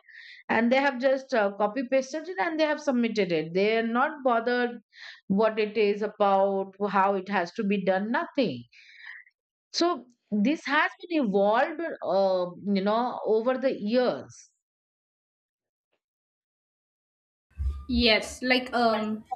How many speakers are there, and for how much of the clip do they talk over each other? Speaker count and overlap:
2, no overlap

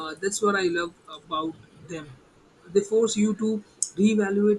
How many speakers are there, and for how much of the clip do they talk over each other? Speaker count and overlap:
1, no overlap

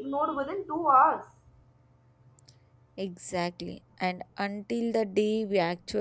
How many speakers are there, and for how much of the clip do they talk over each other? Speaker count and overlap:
2, no overlap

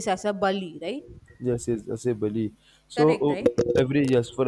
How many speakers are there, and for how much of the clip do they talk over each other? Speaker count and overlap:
2, about 12%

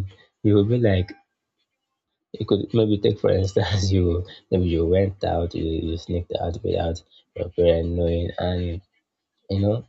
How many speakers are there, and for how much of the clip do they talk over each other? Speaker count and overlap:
1, no overlap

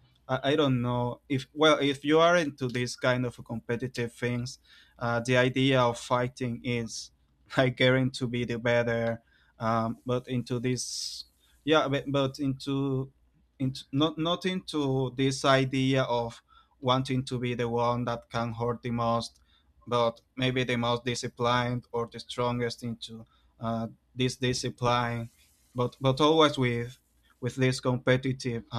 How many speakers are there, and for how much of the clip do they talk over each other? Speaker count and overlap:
1, no overlap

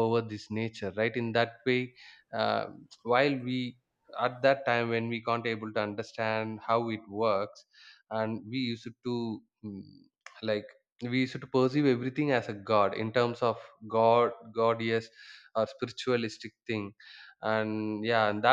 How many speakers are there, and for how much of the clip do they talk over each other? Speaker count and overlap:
1, no overlap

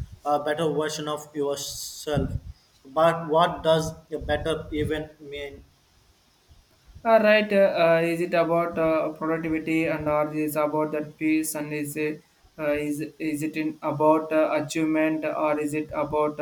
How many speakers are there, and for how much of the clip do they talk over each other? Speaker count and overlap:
2, no overlap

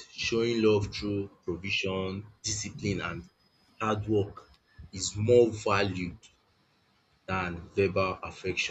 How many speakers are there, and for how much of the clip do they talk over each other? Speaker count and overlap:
1, no overlap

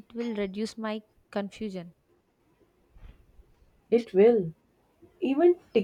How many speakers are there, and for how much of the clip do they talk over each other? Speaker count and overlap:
2, no overlap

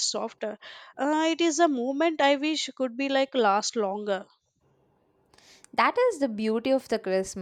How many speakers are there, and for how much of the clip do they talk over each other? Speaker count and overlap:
2, no overlap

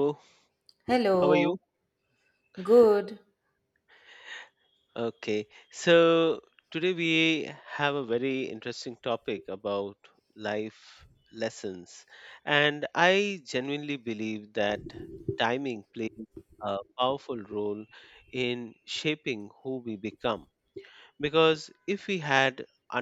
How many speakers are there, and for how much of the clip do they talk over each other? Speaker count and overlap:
2, about 2%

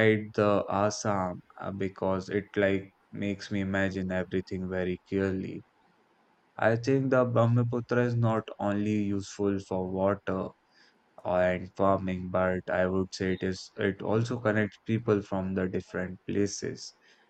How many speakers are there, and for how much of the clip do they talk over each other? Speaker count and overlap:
1, no overlap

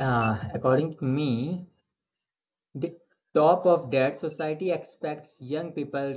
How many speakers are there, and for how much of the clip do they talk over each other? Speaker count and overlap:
1, no overlap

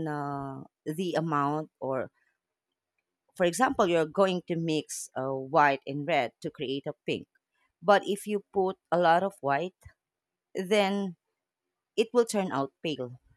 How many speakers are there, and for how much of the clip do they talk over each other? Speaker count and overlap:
1, no overlap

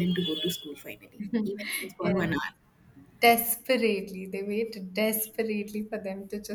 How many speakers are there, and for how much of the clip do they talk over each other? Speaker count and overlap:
2, about 5%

